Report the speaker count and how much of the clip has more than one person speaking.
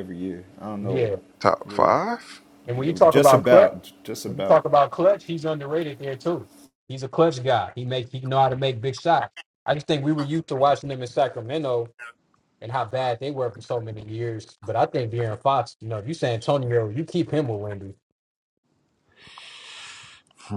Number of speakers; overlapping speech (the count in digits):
3, about 9%